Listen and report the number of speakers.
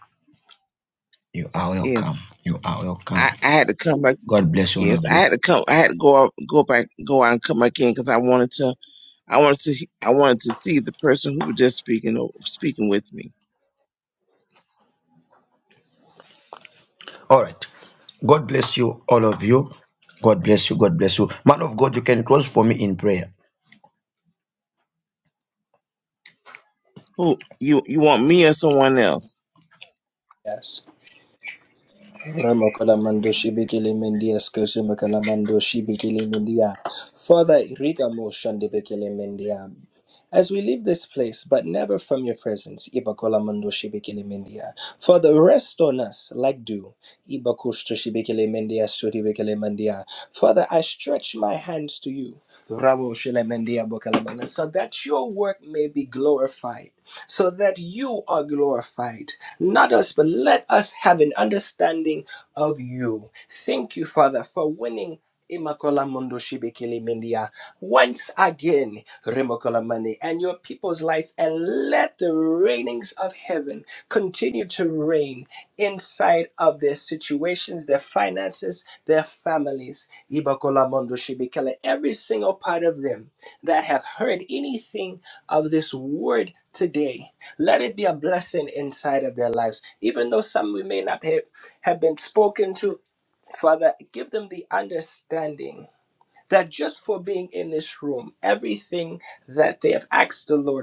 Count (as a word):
three